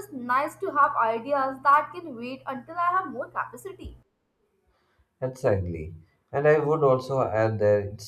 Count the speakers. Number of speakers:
two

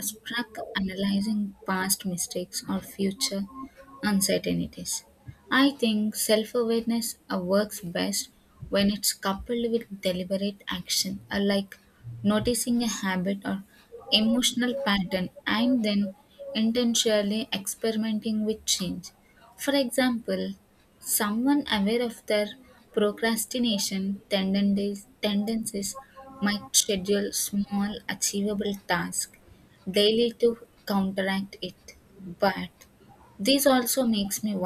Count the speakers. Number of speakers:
one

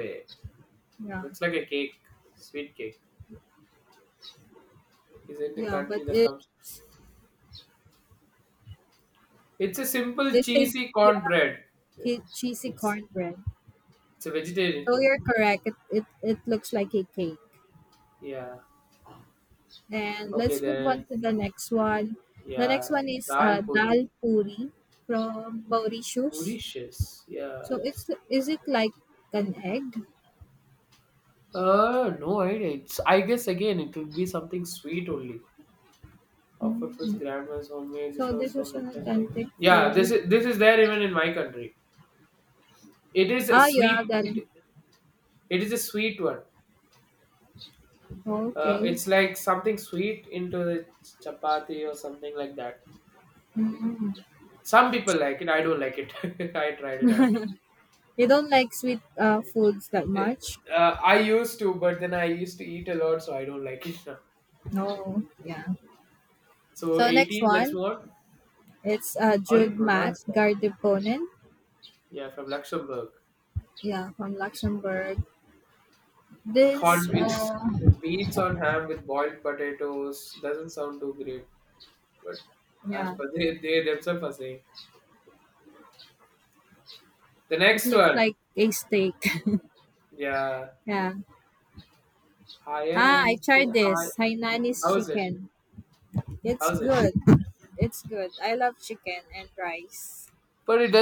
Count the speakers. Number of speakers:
two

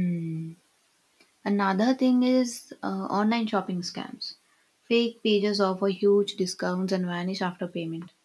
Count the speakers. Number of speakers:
one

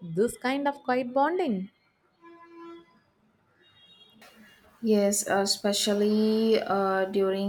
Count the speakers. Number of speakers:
two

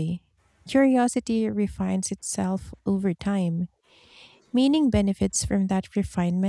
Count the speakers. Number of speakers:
one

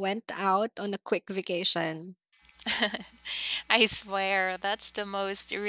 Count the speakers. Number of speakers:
two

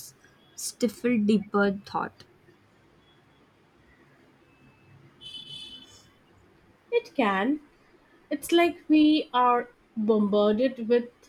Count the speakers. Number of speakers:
two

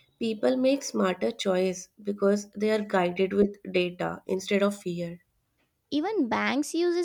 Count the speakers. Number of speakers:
two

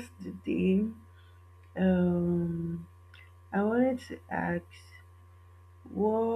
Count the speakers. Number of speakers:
one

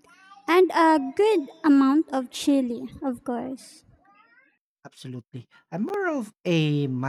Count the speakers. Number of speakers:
two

